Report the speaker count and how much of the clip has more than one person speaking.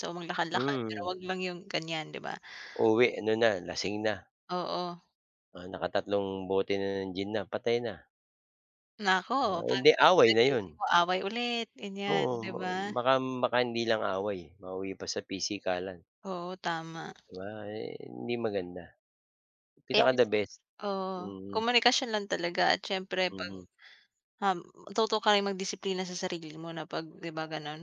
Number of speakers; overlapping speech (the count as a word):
two, about 10%